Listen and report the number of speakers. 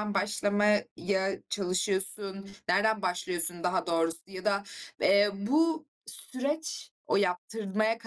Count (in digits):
1